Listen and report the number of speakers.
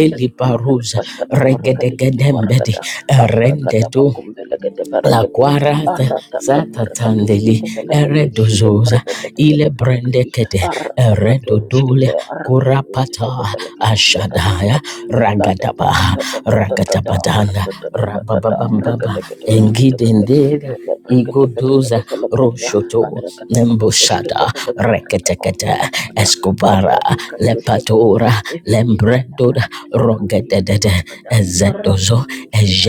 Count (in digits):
2